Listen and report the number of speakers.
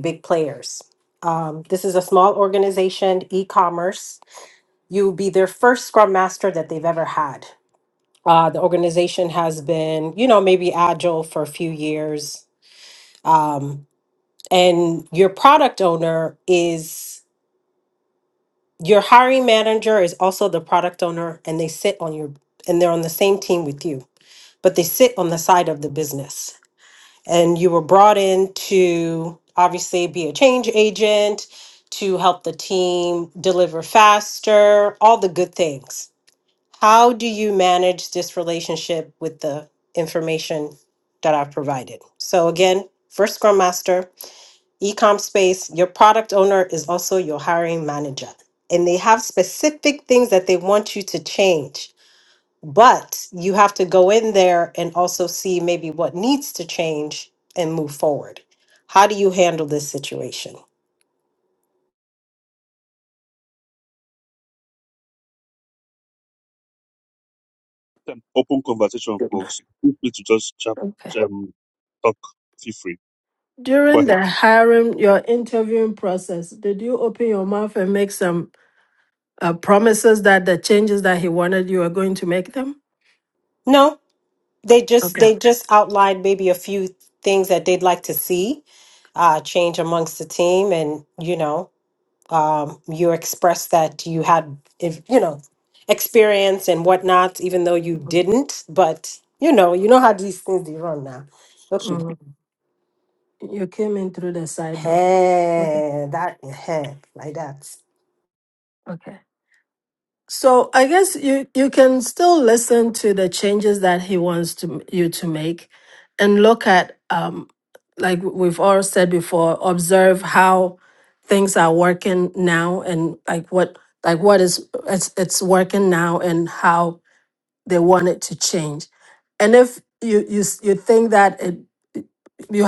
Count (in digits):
3